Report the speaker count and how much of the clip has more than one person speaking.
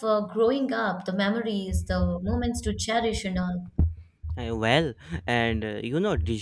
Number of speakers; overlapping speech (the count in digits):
2, no overlap